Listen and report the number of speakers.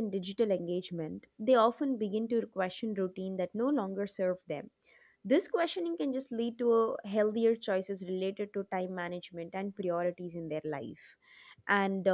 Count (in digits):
1